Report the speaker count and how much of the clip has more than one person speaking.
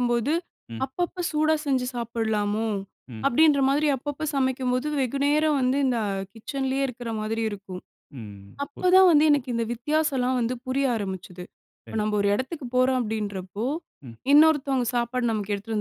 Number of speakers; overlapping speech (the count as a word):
two, about 2%